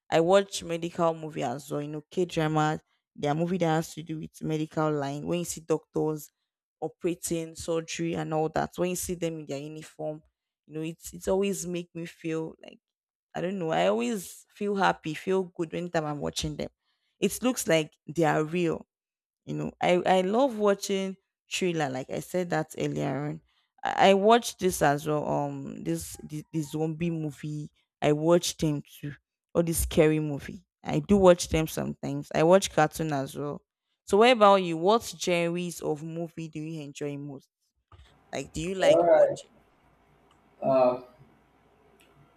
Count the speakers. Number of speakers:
2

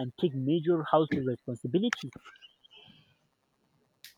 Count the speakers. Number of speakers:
1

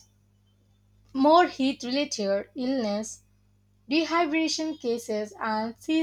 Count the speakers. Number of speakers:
1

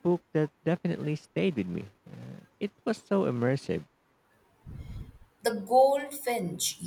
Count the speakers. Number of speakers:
2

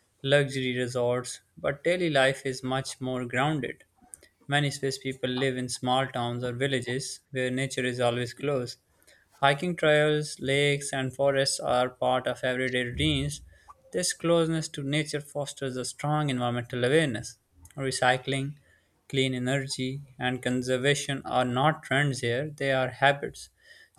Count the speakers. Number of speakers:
1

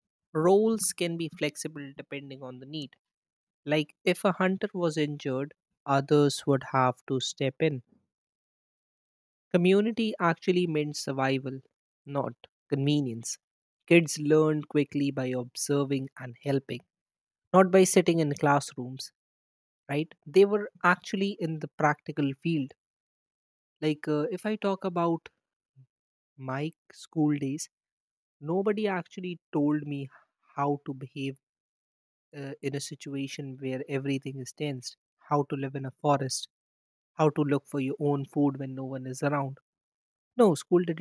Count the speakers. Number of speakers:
1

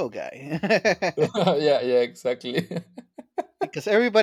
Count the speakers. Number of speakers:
2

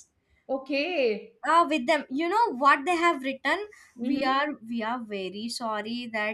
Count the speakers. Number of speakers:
2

